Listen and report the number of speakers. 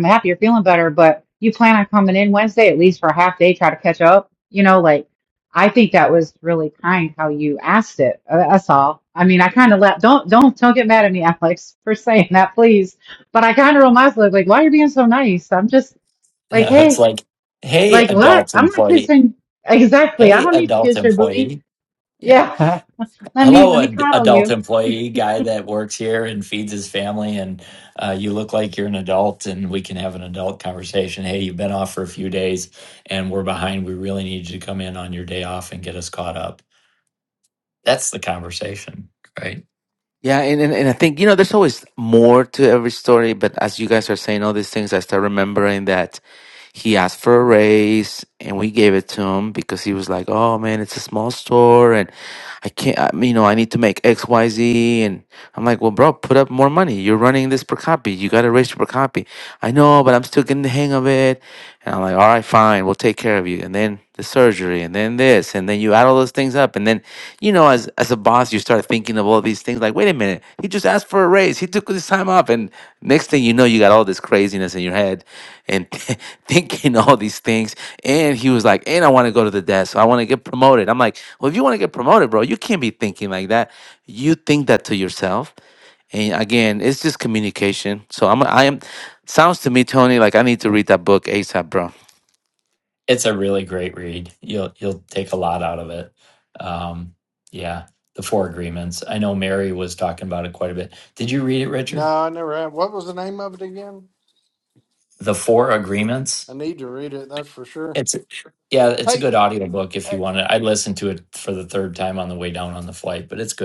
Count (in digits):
4